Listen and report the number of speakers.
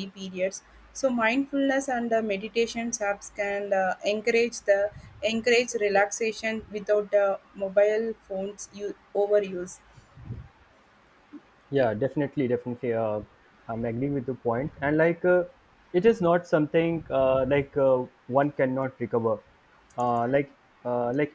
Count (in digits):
2